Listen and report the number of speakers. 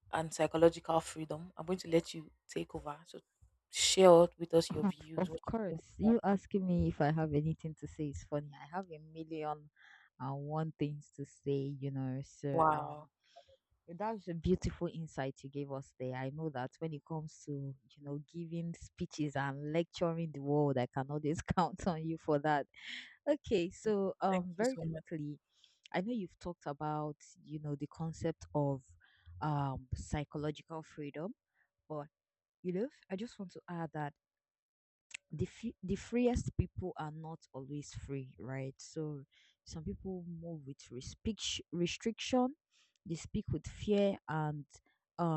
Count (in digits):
2